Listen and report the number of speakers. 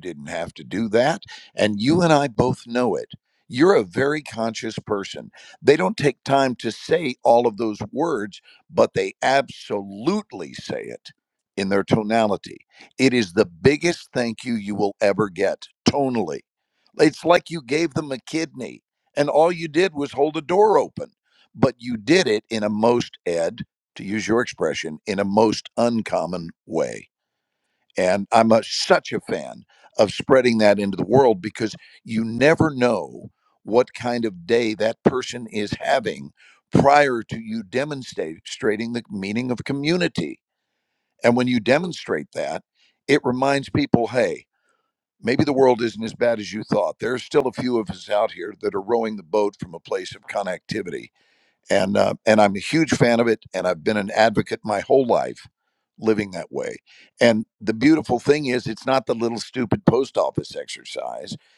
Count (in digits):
1